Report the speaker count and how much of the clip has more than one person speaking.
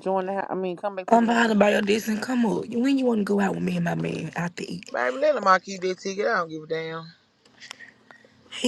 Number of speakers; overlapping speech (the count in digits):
3, about 5%